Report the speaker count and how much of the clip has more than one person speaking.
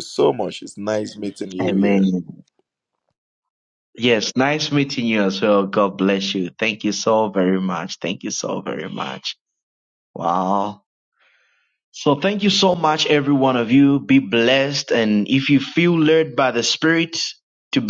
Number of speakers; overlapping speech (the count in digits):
2, about 3%